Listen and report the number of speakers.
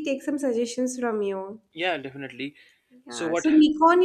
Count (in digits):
2